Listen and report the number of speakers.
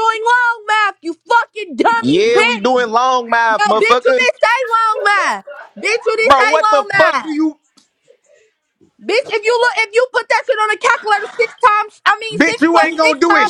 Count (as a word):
two